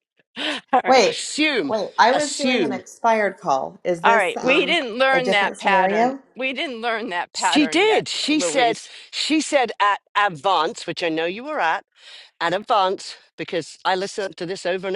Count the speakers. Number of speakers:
3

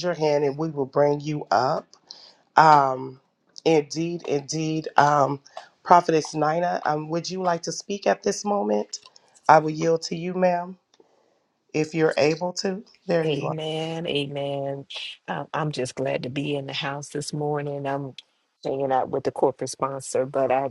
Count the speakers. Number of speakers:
2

